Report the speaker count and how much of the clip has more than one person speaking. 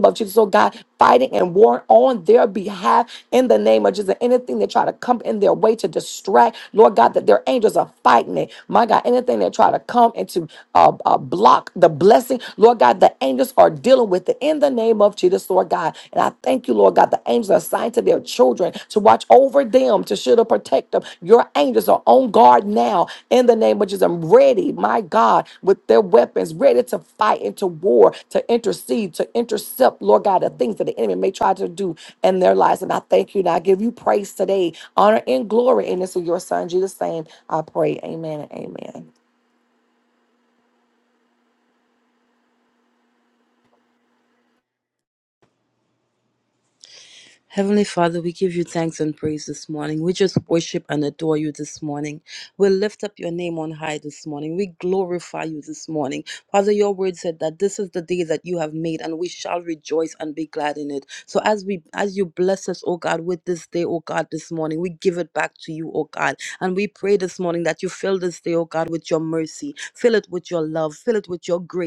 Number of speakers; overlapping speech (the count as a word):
two, no overlap